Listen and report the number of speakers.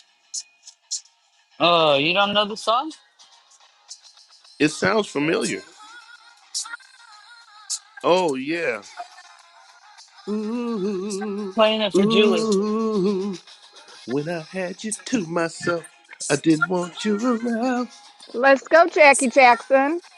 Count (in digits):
3